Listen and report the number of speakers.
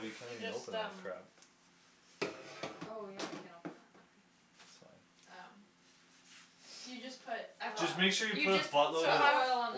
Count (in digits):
3